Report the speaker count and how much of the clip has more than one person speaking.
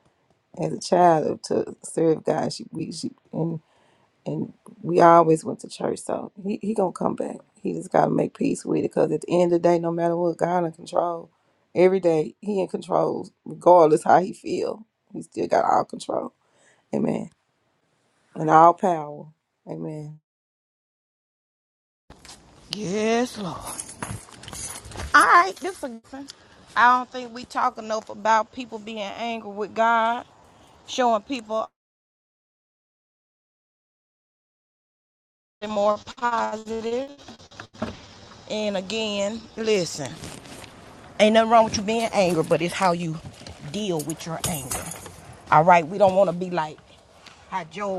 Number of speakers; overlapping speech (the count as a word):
two, no overlap